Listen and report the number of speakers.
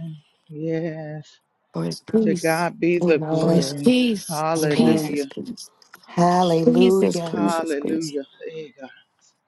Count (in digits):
3